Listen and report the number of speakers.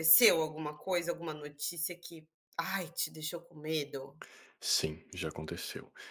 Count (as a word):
two